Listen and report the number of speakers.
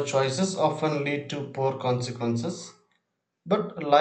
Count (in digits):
1